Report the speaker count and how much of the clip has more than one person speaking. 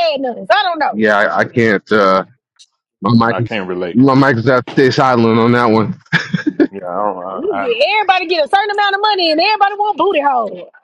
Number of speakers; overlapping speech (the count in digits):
3, about 8%